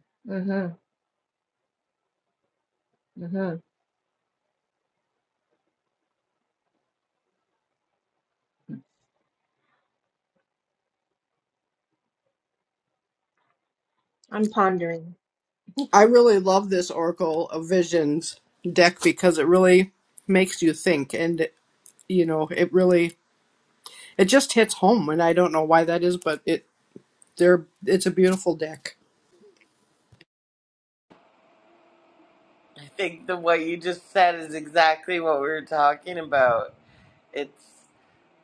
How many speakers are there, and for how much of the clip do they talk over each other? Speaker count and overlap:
3, no overlap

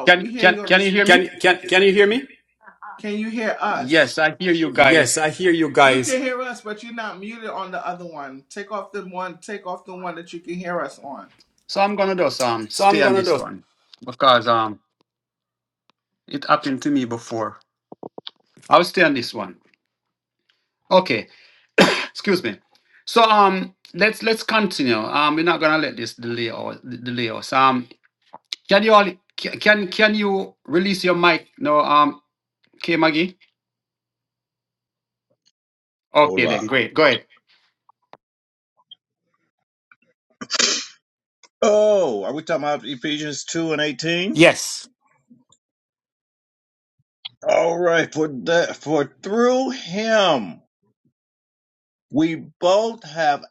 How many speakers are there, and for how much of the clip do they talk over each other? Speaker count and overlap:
4, about 6%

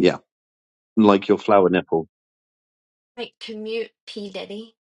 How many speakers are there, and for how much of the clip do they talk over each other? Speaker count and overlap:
2, no overlap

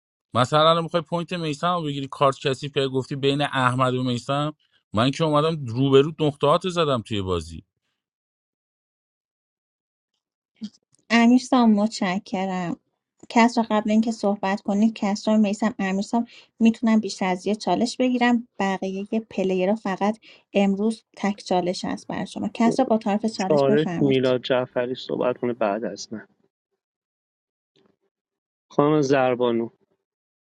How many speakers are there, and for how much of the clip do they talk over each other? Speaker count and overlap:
3, about 3%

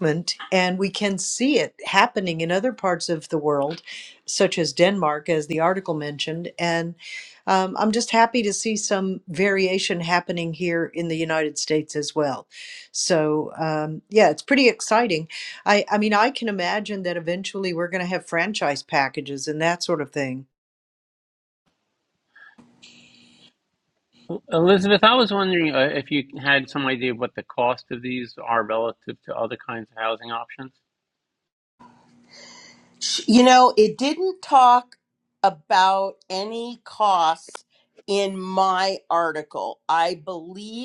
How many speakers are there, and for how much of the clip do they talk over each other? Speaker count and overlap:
3, no overlap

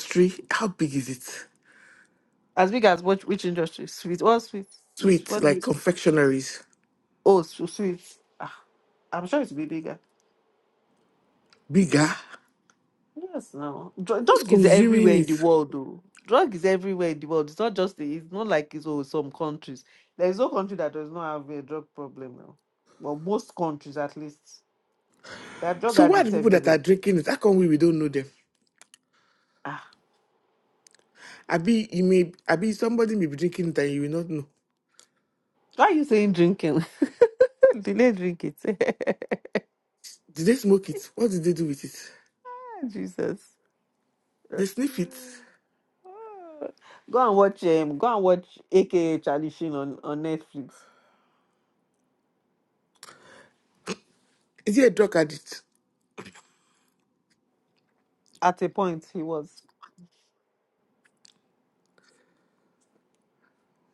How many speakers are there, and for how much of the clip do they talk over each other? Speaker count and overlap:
2, about 4%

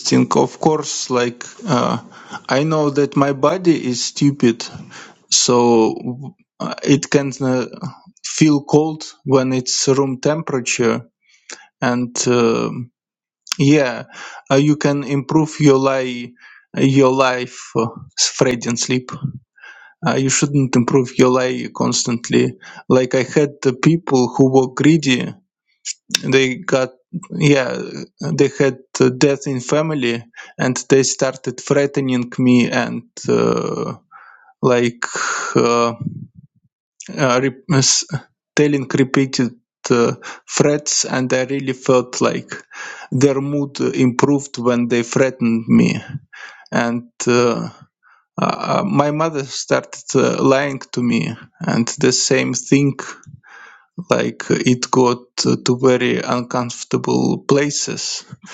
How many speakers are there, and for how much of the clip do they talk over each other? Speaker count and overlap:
1, no overlap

